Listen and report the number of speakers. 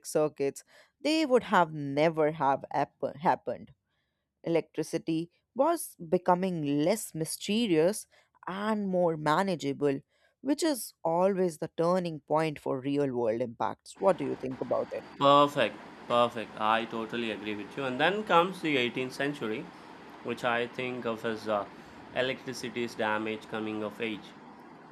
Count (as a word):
two